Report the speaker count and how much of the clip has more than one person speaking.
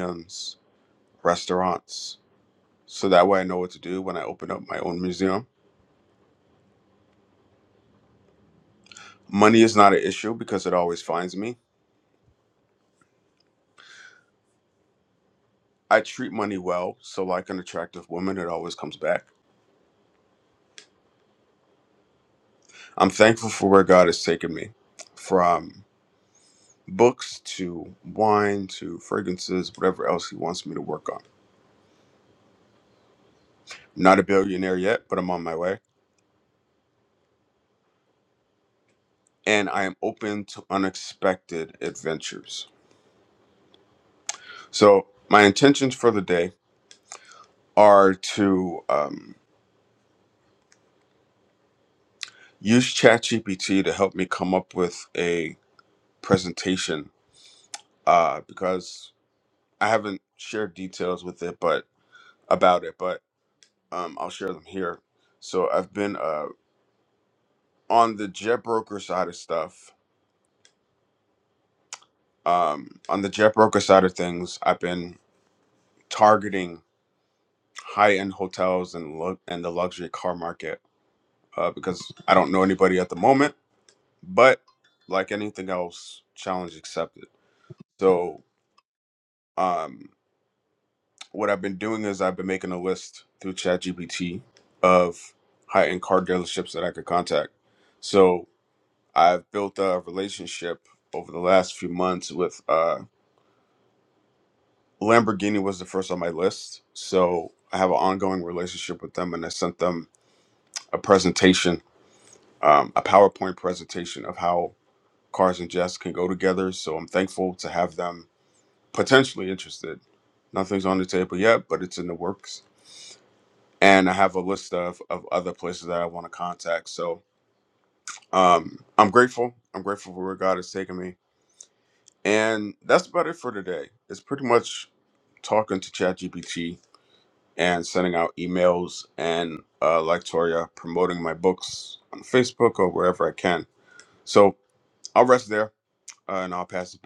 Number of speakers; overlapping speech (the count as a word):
one, no overlap